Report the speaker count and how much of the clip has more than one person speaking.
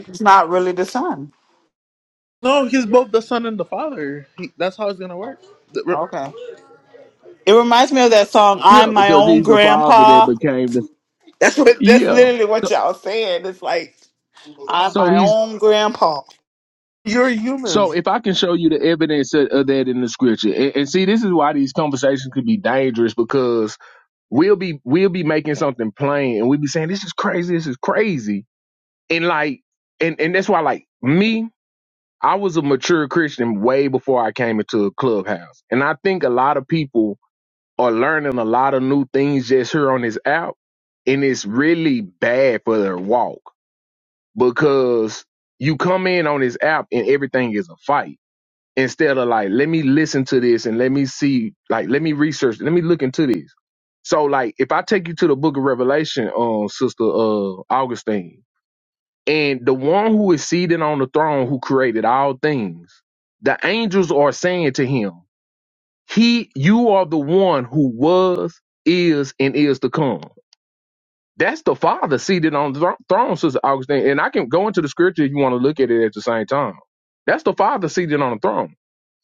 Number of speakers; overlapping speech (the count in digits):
3, about 4%